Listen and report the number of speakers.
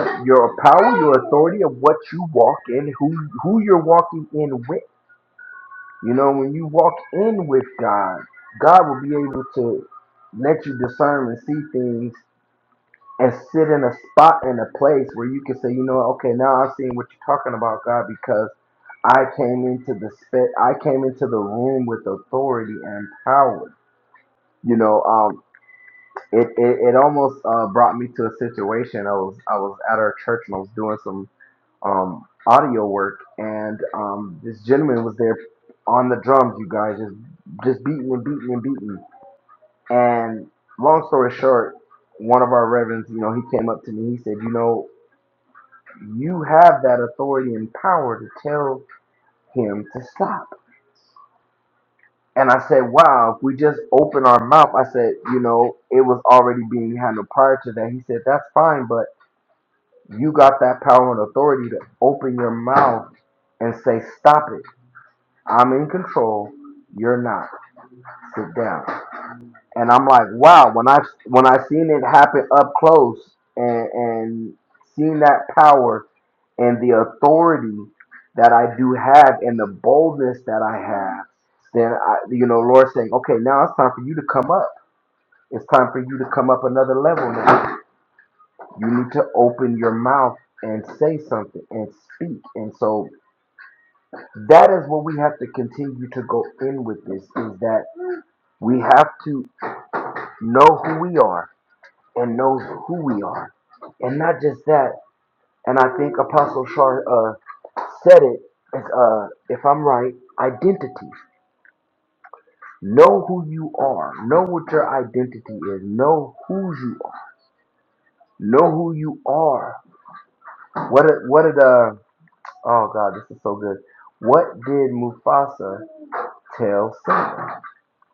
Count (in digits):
1